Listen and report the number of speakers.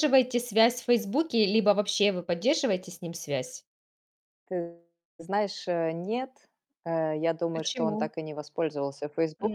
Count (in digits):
2